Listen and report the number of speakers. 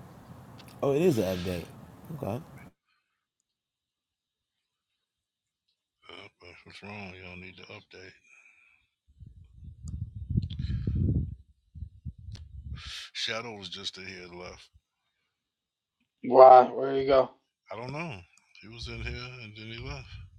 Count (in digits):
3